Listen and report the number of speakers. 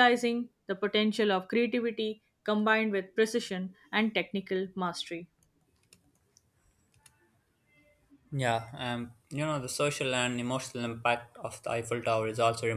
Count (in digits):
2